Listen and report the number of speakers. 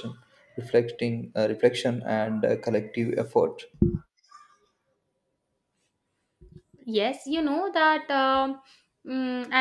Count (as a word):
two